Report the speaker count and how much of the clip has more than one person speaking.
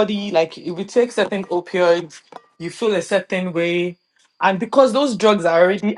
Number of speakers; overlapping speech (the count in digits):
1, no overlap